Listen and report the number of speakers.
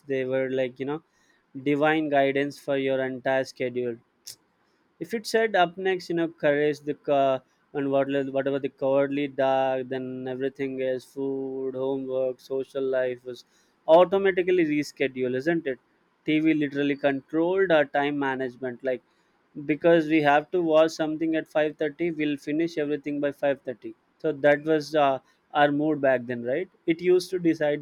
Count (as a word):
one